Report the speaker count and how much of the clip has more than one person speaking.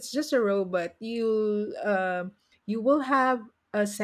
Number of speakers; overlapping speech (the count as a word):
one, no overlap